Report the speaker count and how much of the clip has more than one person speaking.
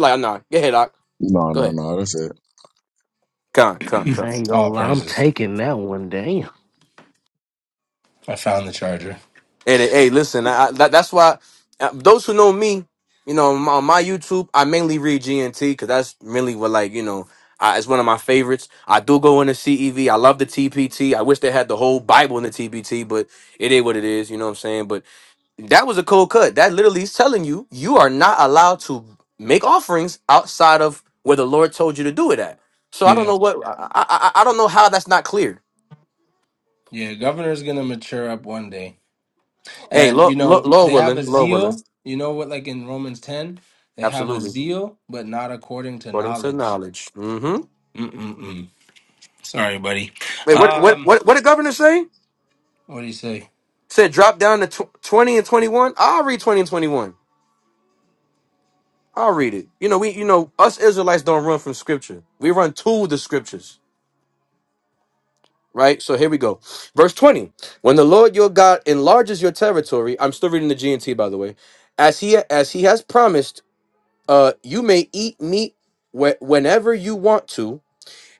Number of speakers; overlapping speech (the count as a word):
four, about 6%